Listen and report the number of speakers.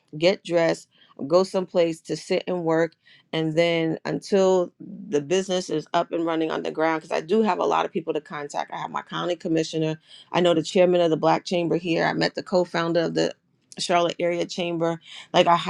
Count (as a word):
one